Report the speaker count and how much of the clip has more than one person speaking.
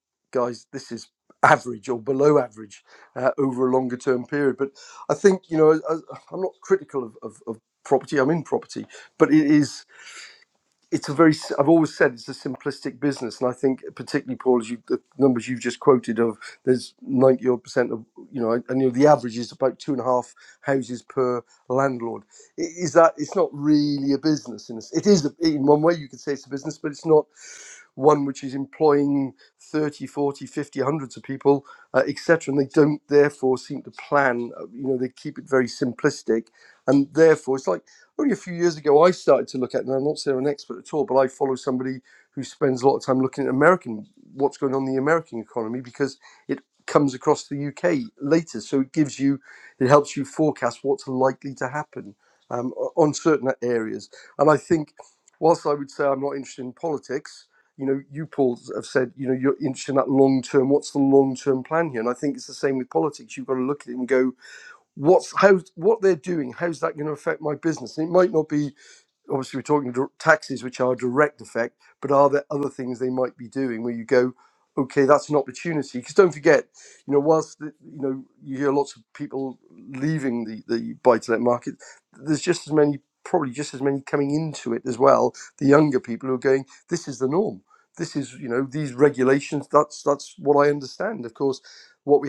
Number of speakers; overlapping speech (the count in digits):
1, no overlap